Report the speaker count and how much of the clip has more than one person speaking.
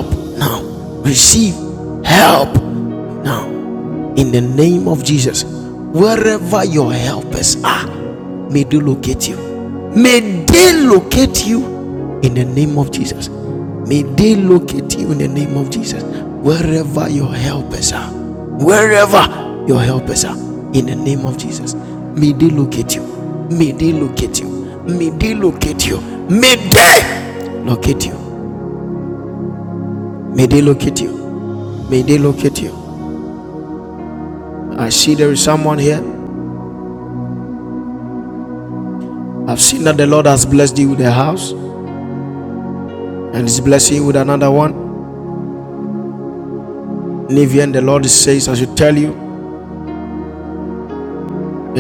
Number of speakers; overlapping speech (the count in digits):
1, no overlap